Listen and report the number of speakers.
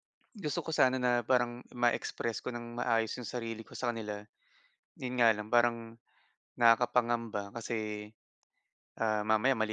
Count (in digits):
1